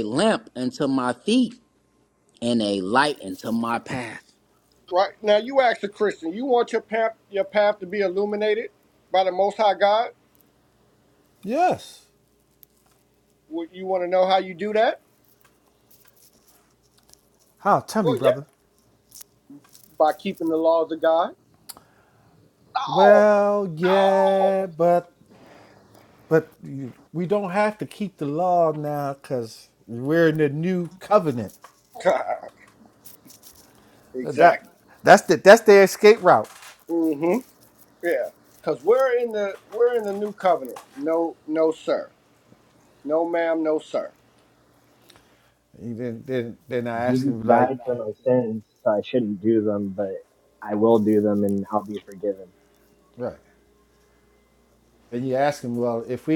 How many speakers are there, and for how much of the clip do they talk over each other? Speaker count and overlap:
four, about 4%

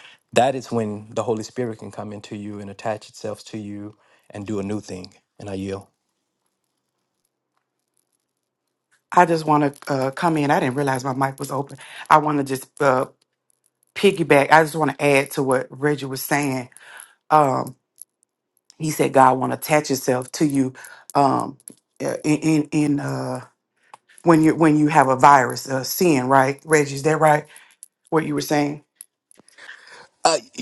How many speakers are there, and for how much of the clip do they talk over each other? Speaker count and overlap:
two, no overlap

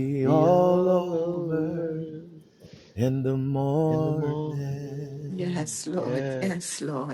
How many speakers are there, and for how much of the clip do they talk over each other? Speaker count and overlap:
three, about 36%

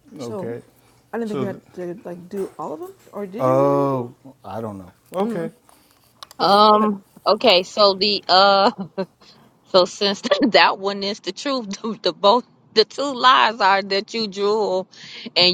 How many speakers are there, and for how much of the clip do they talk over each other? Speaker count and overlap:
three, about 12%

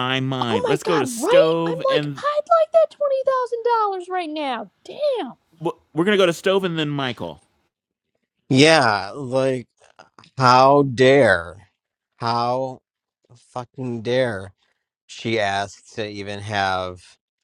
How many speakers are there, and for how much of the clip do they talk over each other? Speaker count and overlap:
three, about 10%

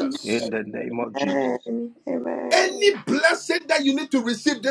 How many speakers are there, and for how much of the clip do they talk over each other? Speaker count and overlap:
three, about 30%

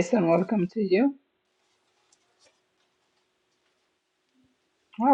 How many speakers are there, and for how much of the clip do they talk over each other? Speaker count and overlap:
one, no overlap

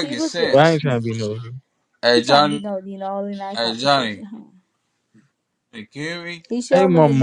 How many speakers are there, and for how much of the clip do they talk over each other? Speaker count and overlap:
three, about 32%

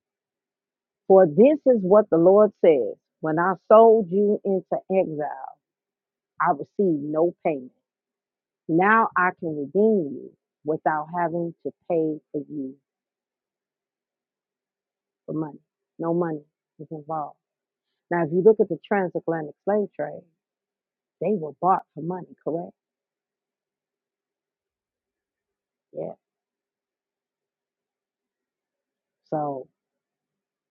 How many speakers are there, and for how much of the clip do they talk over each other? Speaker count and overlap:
one, no overlap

